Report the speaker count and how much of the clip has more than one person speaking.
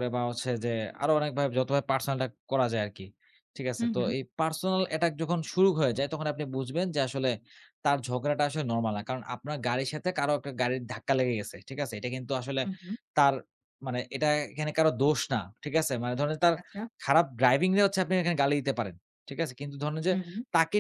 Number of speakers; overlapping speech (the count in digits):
2, about 2%